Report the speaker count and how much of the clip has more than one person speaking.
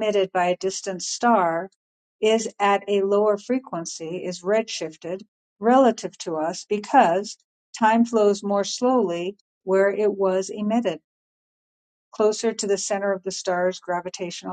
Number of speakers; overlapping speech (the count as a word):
one, no overlap